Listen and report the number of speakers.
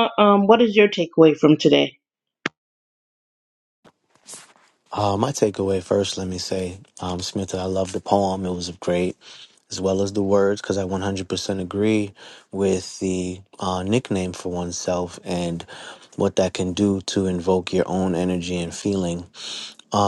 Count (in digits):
2